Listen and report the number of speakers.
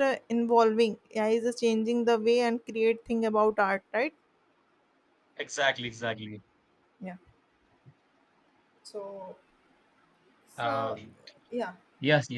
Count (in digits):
2